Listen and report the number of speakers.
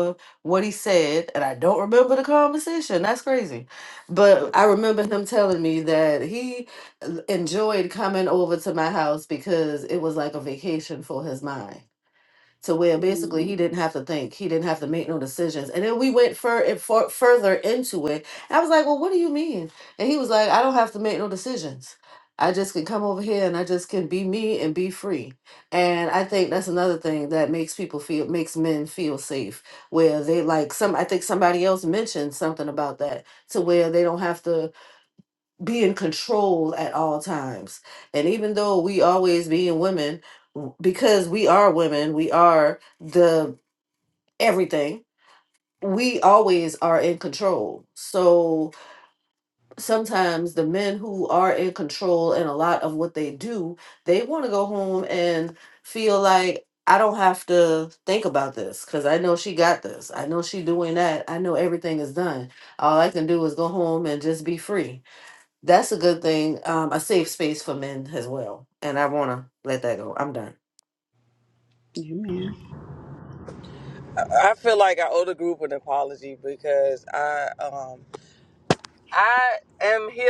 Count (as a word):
three